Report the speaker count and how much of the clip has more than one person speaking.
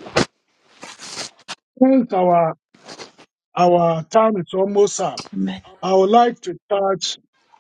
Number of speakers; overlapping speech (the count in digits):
1, no overlap